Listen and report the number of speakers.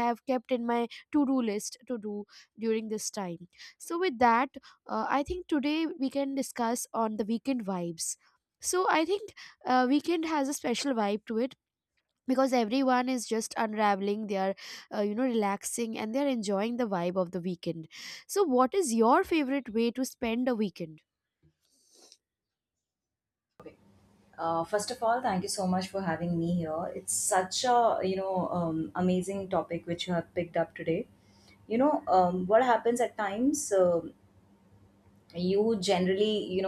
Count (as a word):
two